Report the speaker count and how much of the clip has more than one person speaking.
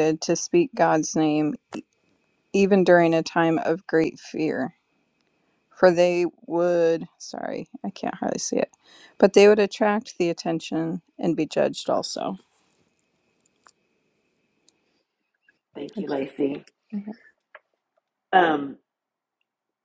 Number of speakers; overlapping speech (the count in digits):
2, no overlap